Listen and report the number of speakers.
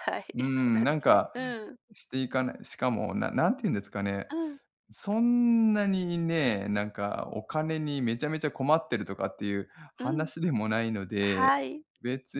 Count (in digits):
2